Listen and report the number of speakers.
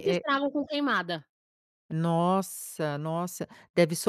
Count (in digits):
2